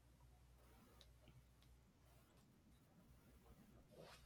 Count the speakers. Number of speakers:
zero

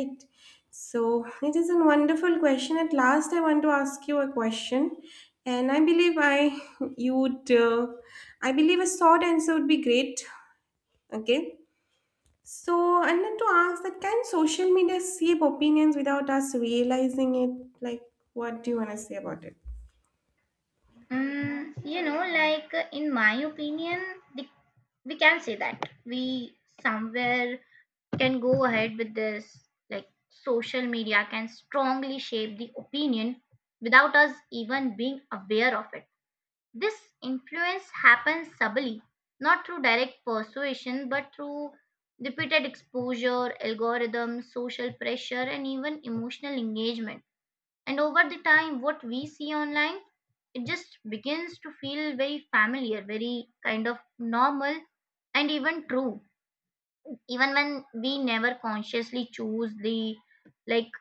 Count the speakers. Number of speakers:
two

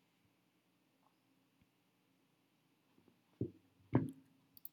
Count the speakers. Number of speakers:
zero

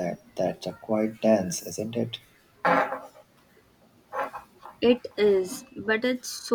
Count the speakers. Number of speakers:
two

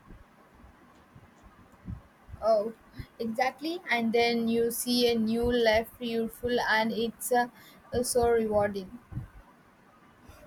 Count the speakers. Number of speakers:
one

